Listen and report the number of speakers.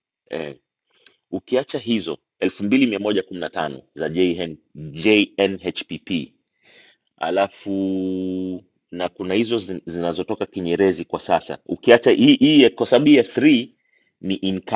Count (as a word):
one